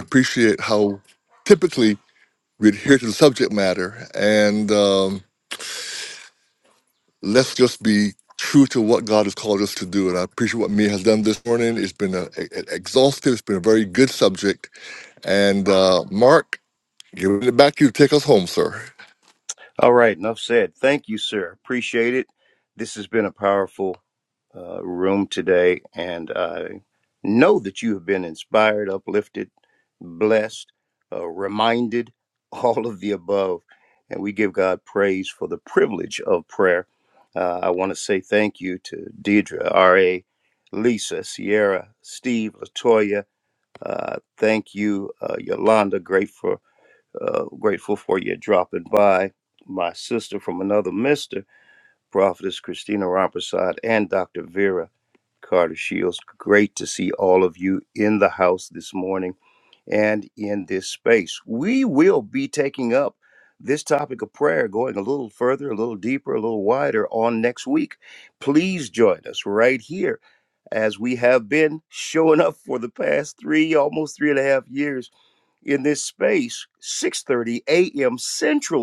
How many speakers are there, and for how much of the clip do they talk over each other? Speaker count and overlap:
2, no overlap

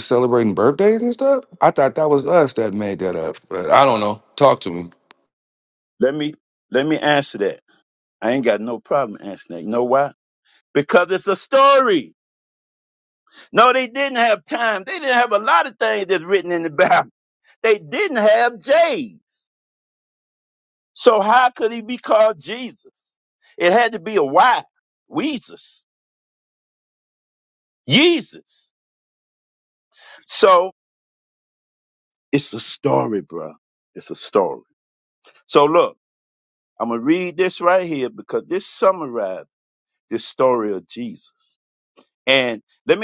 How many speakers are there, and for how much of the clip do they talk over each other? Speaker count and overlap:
2, no overlap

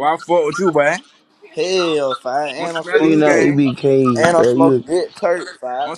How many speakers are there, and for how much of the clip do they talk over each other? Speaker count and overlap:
3, about 28%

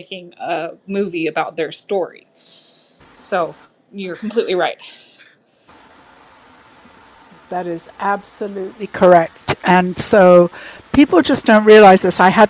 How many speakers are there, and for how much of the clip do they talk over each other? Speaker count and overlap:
2, no overlap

